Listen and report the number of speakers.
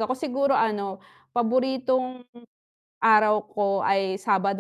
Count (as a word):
one